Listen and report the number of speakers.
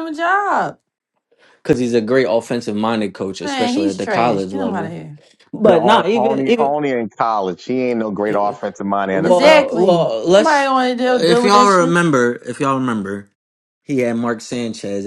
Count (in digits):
3